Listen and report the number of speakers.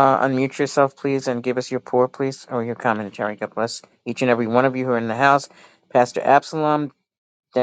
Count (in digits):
1